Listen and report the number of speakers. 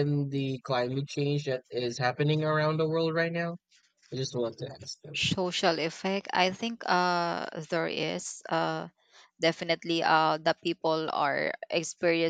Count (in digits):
2